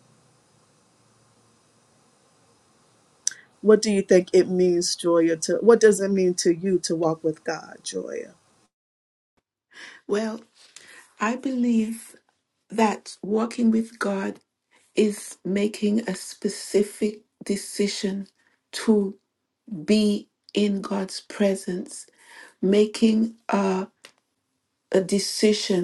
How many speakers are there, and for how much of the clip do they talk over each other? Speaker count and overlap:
2, no overlap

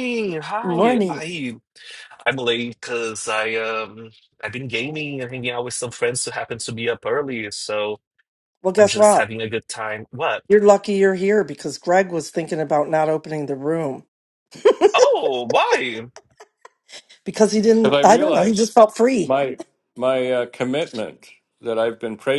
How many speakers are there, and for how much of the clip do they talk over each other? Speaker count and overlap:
3, about 8%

